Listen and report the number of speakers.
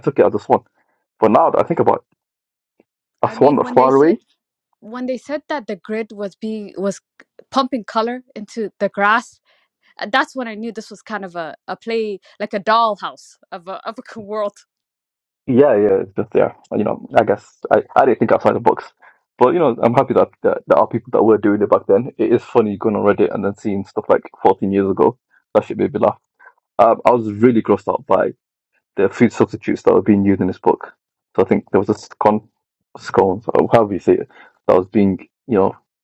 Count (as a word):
two